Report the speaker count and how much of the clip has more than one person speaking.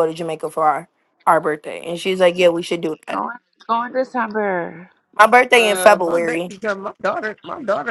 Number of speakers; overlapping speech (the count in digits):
3, about 13%